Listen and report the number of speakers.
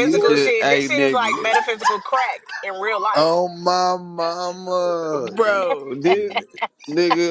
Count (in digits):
3